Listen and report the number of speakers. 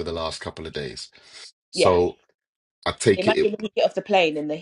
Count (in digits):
2